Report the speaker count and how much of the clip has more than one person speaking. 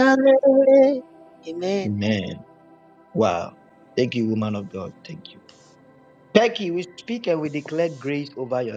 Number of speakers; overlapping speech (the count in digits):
2, under 1%